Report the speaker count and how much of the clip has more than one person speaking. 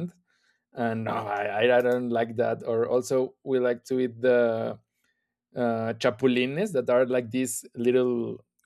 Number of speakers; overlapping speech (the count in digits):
1, no overlap